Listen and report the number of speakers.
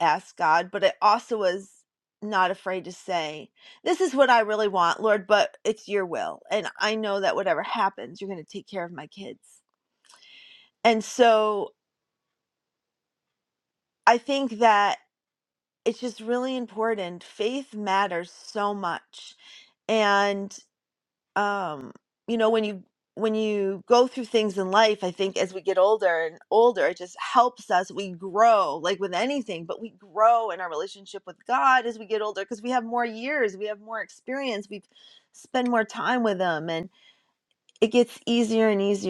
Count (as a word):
one